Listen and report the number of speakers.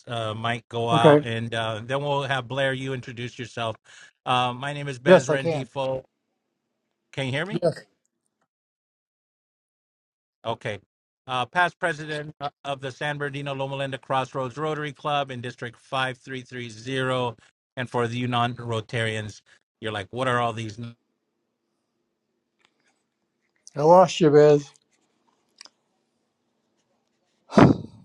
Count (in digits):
2